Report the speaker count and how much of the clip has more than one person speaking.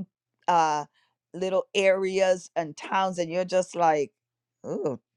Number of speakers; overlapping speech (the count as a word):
one, no overlap